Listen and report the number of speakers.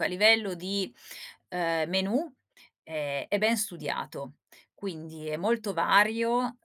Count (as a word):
one